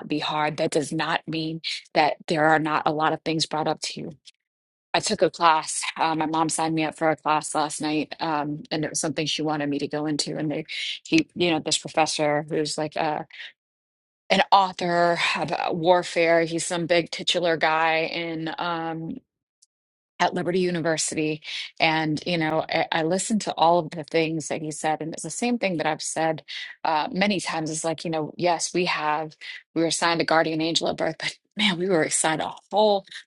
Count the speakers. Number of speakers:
one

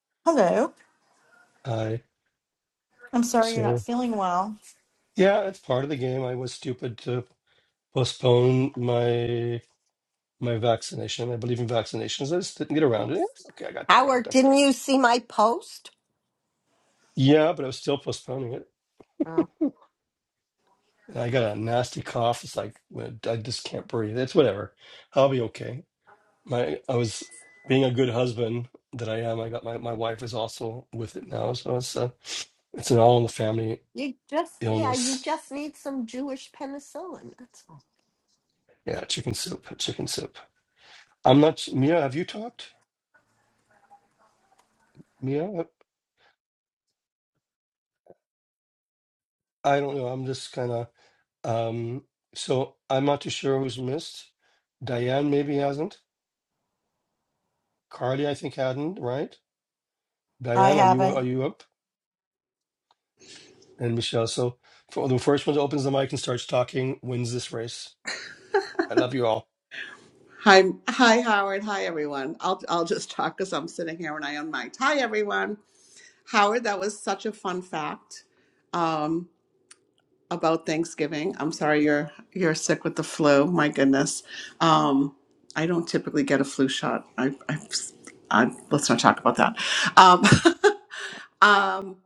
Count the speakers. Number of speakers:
four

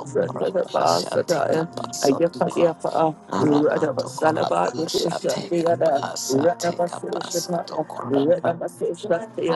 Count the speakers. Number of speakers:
two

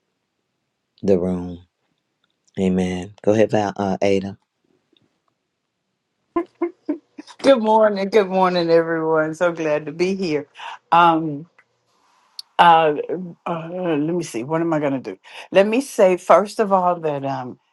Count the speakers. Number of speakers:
two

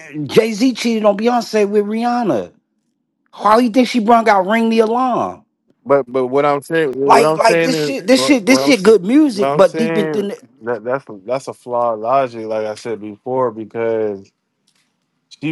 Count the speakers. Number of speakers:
two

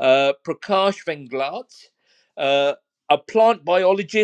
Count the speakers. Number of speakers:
one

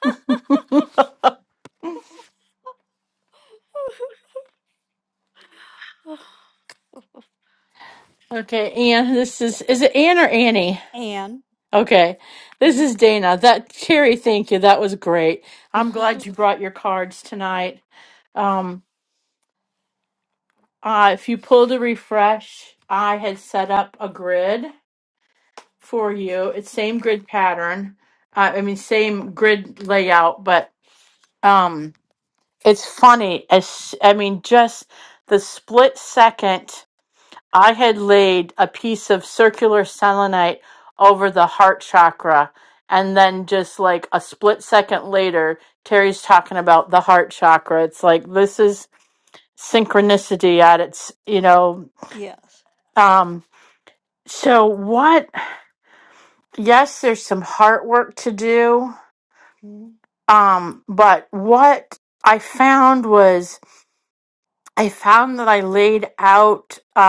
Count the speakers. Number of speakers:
two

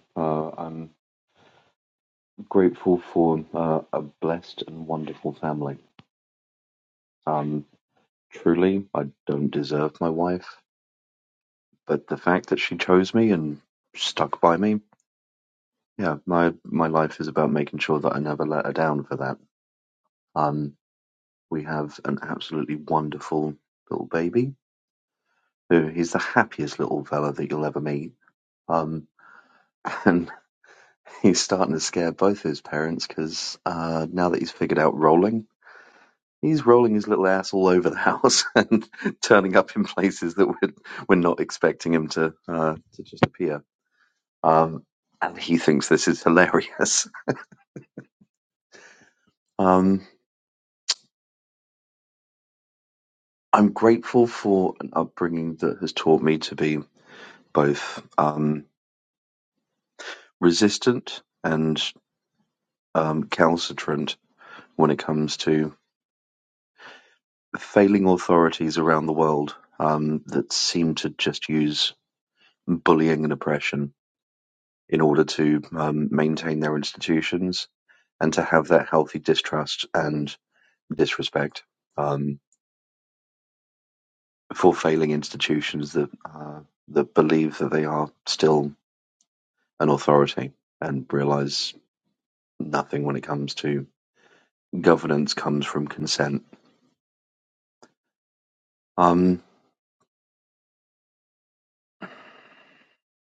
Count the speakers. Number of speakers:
one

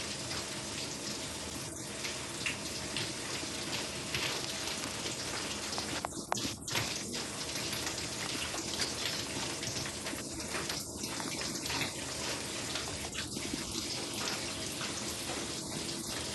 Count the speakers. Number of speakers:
zero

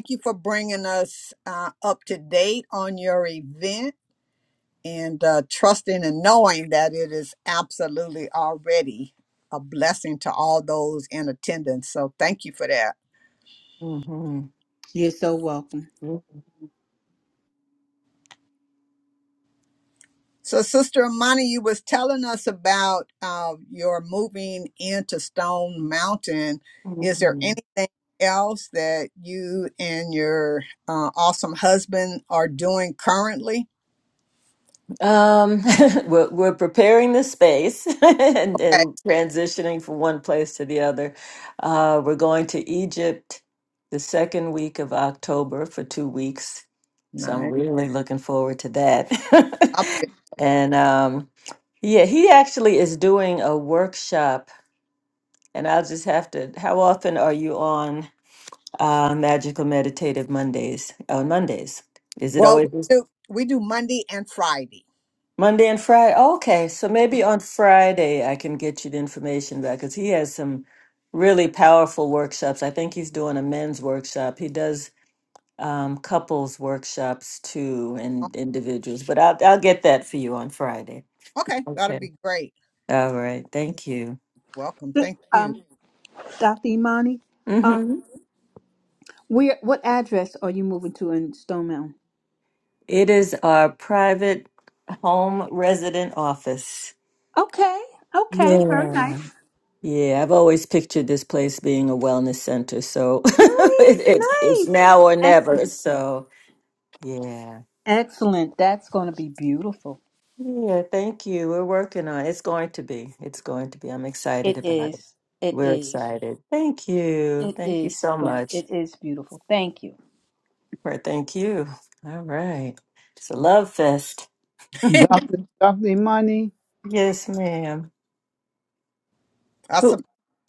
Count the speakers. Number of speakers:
four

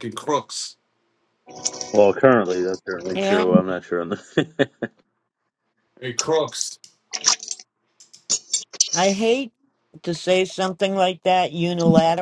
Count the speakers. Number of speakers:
three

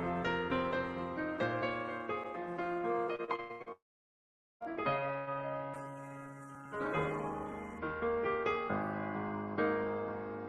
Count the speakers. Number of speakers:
zero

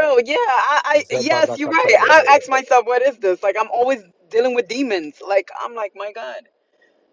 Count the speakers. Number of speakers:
one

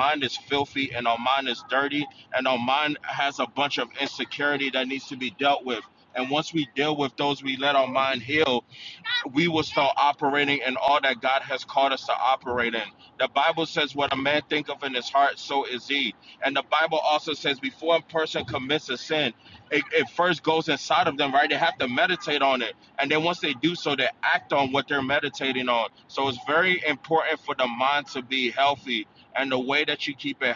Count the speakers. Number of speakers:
one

